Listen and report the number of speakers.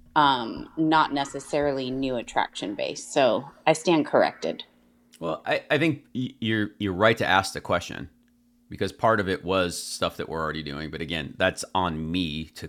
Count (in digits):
2